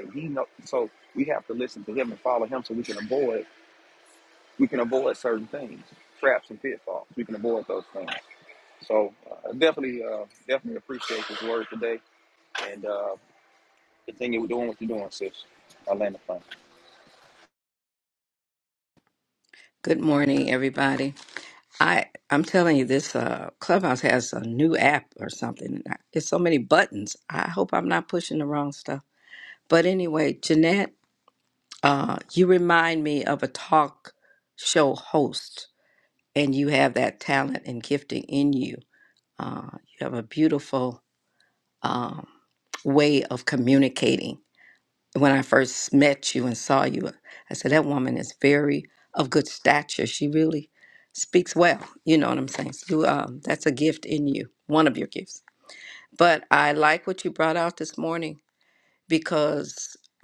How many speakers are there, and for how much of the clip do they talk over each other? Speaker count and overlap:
2, no overlap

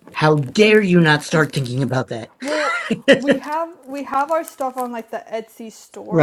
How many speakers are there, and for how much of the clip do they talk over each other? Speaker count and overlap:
2, about 9%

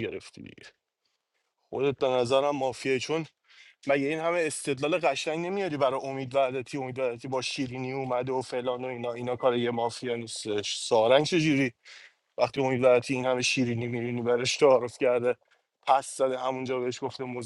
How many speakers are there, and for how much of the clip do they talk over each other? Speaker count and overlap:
1, no overlap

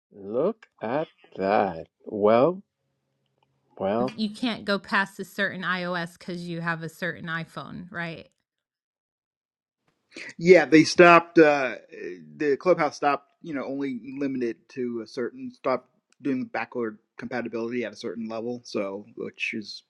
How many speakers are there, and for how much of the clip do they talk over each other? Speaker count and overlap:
3, under 1%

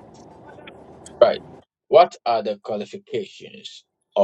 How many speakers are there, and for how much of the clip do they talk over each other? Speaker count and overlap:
1, no overlap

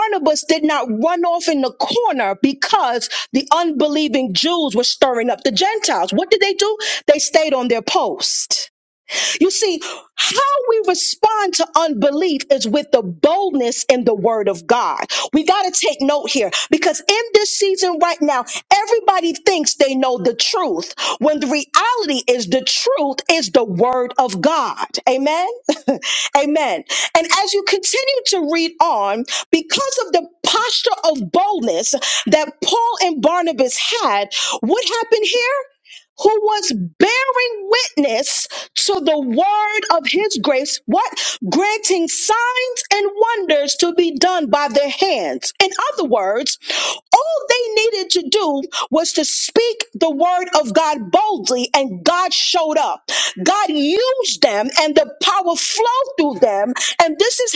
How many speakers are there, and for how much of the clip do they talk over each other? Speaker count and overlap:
1, no overlap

